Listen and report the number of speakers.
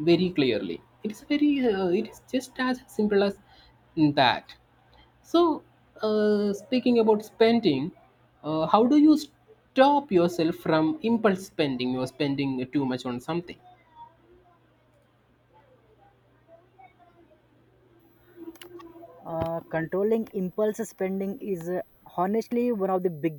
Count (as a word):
two